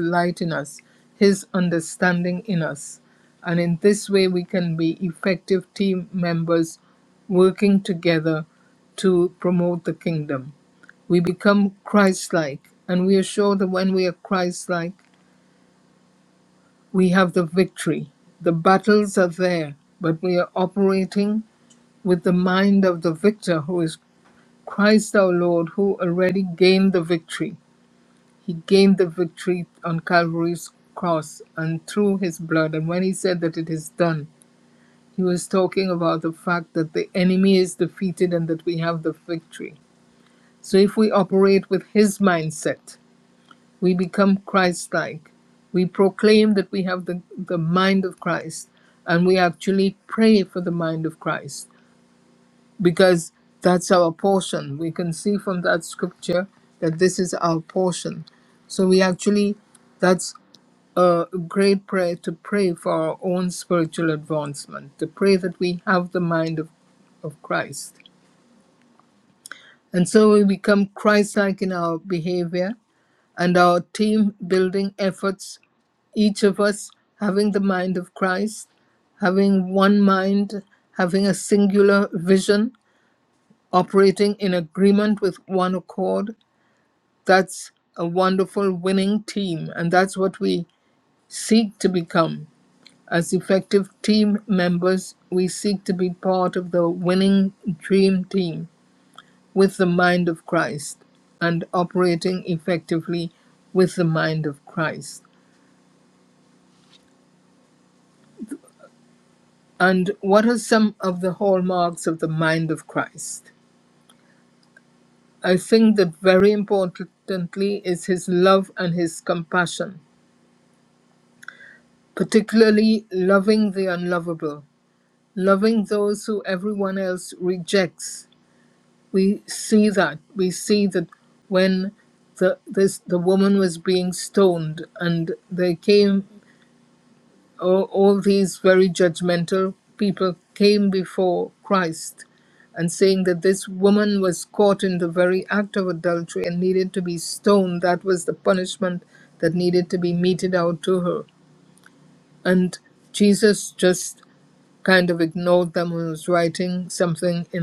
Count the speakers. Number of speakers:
1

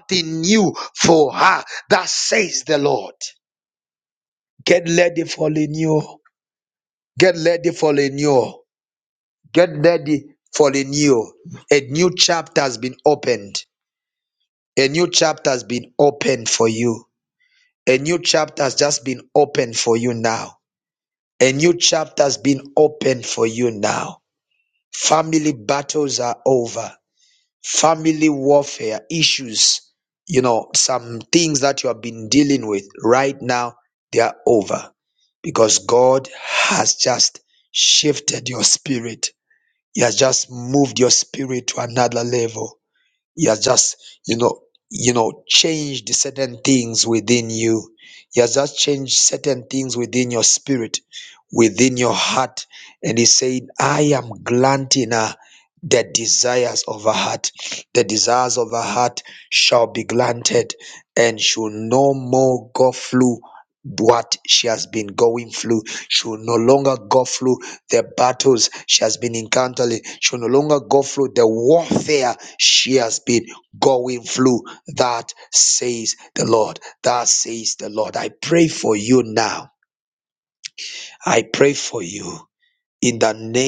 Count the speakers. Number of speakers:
1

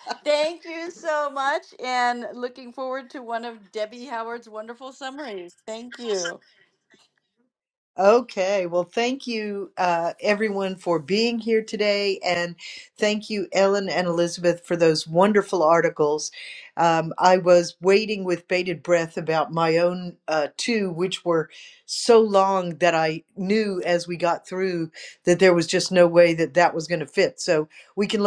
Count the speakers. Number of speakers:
2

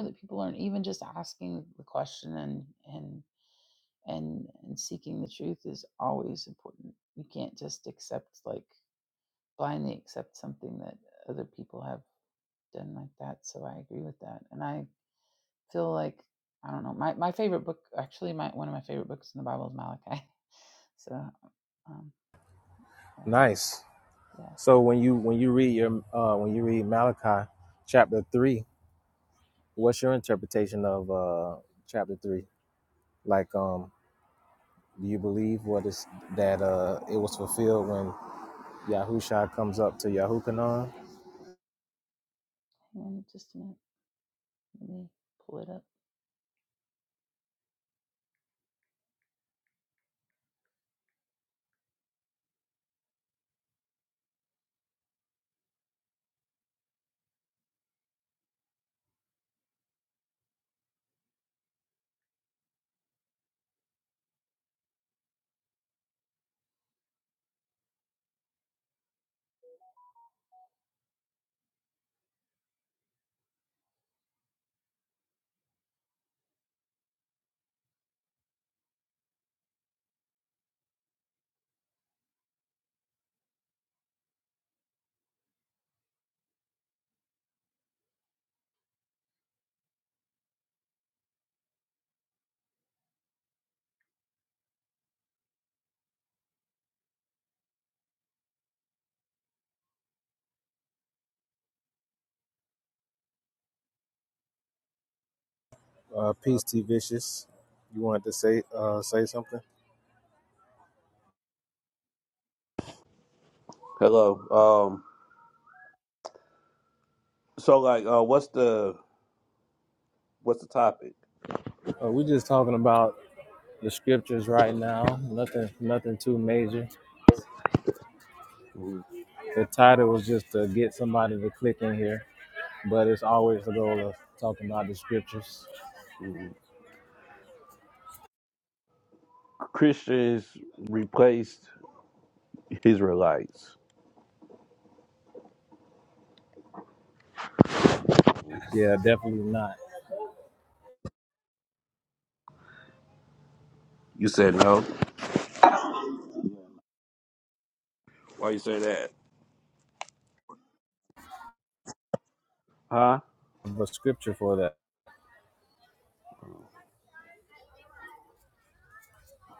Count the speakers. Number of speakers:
3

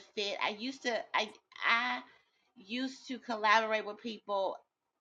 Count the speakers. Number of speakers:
1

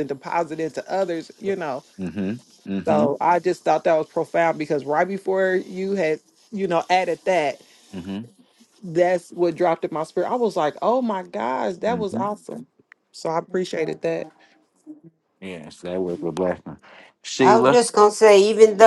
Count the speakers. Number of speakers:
3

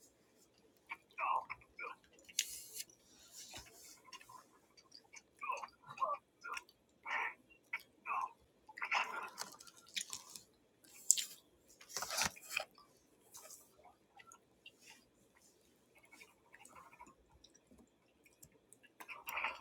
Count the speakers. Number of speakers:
0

